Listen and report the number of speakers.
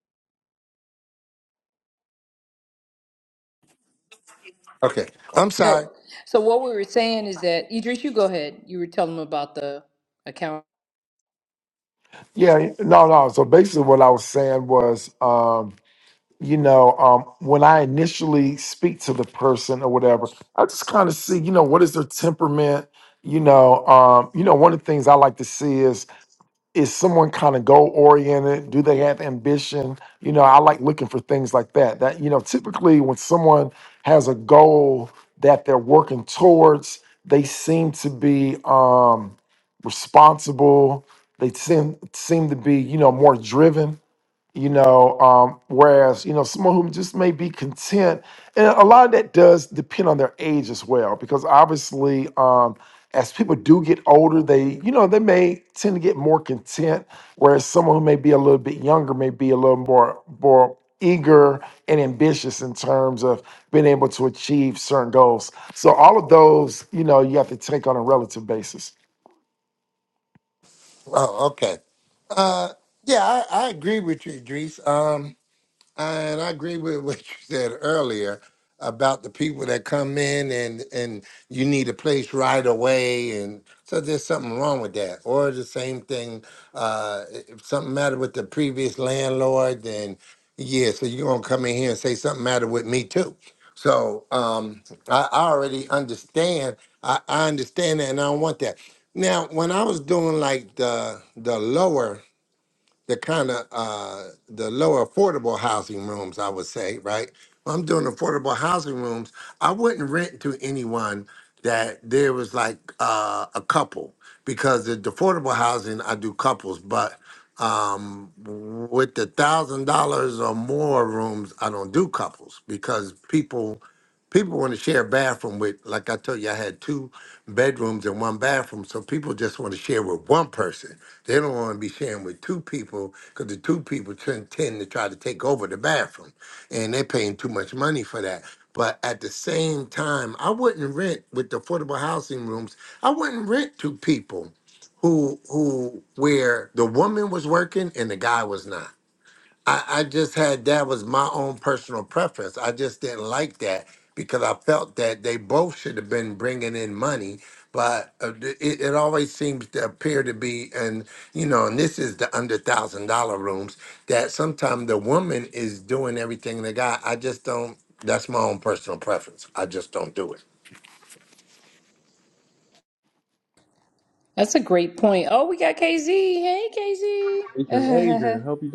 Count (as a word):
four